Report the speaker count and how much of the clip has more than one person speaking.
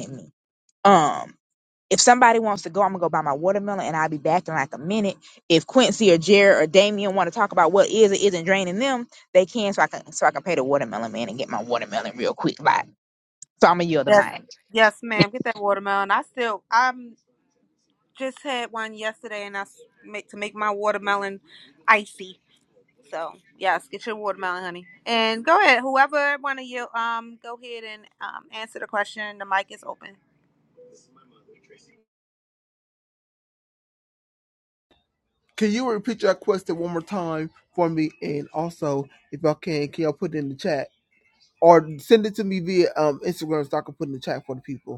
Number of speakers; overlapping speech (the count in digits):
3, about 1%